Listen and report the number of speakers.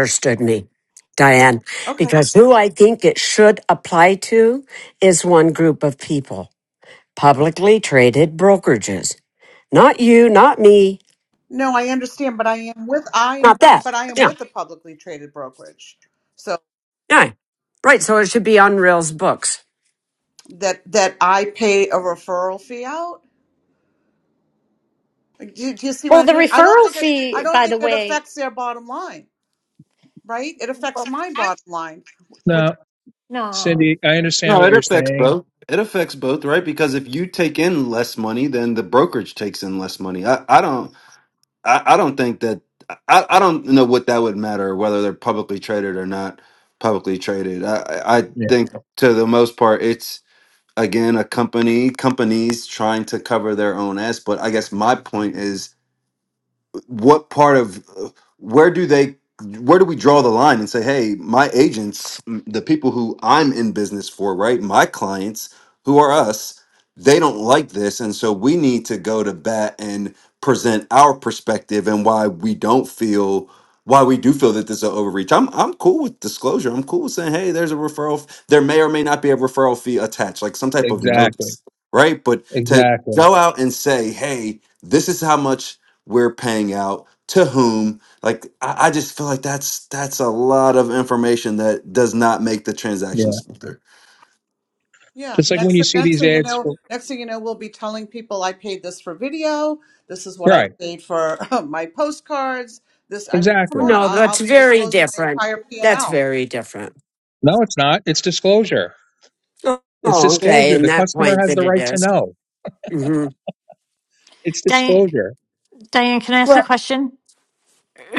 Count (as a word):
five